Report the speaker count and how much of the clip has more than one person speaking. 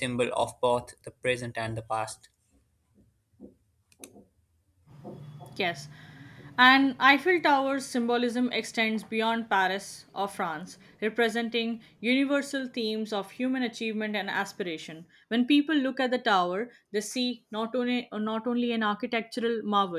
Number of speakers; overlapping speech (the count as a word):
two, no overlap